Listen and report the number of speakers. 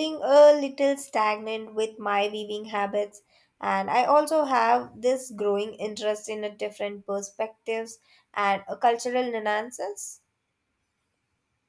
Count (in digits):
1